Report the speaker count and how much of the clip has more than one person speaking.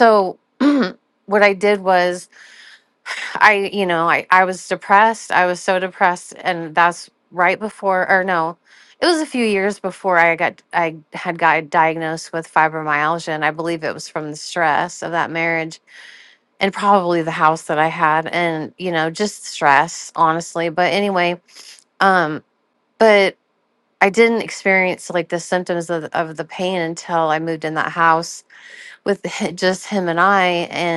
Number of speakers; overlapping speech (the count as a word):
one, no overlap